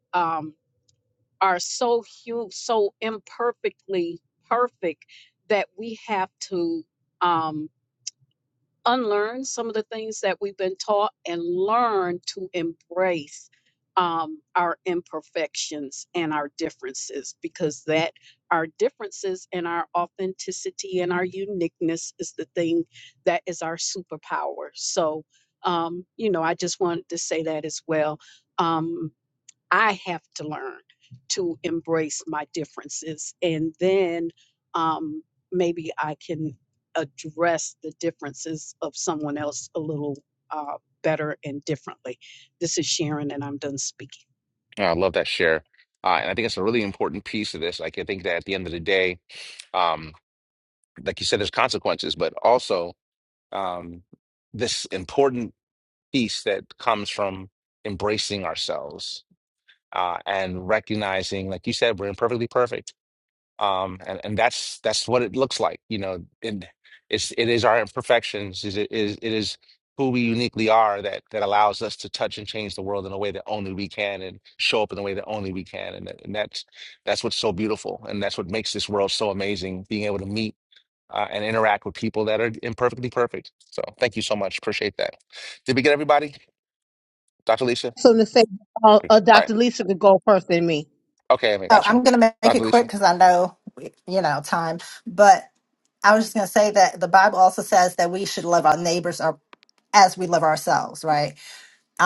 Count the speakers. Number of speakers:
four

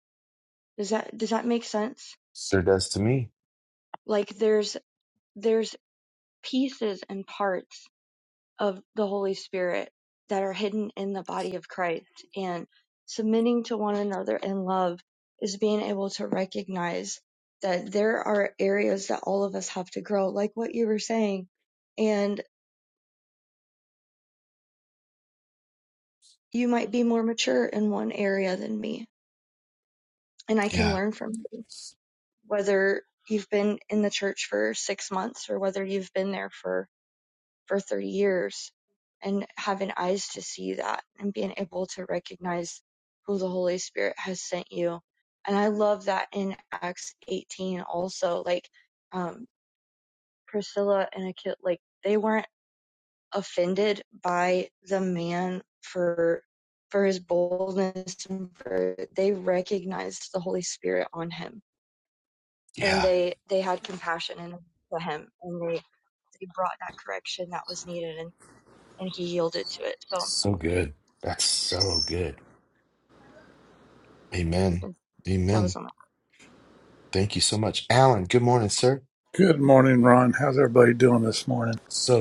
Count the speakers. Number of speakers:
three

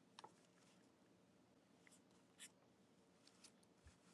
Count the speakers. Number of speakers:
zero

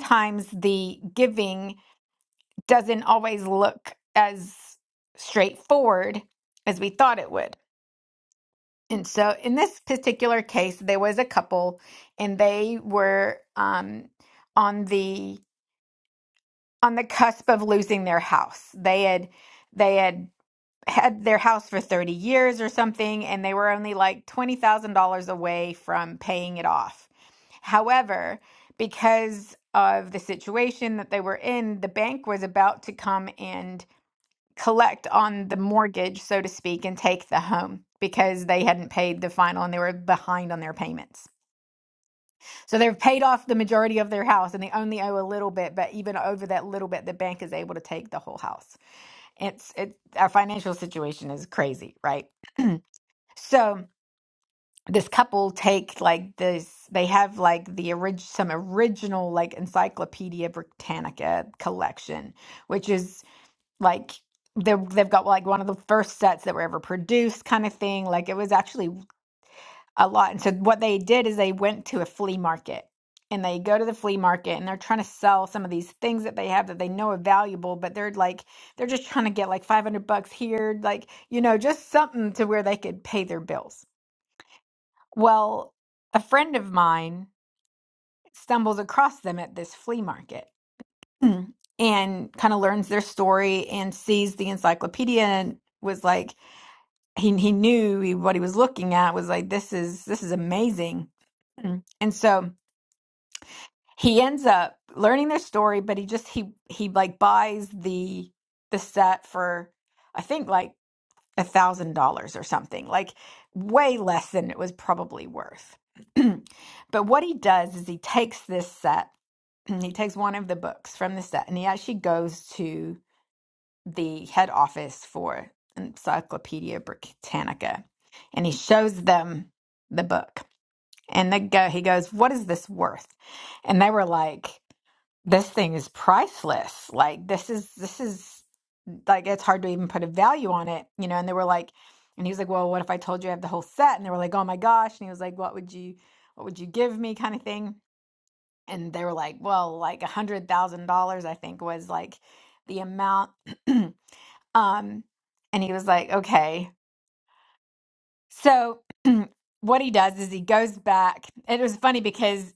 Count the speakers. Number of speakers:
one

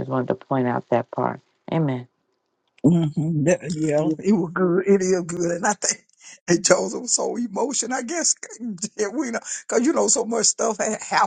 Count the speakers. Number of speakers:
two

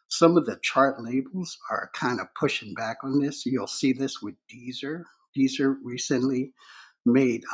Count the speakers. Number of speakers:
one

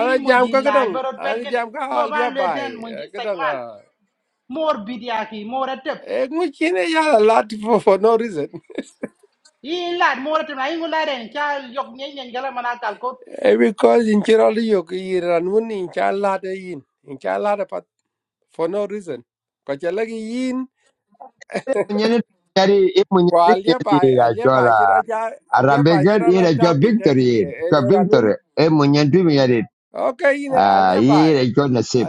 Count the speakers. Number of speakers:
three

